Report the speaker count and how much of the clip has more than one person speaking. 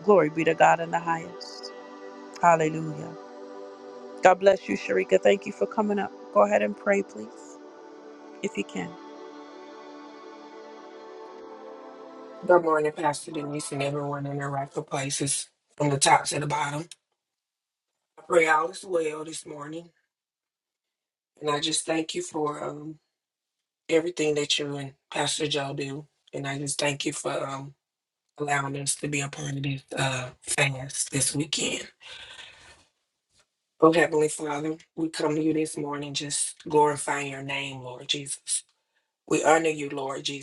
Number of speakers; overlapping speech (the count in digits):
2, no overlap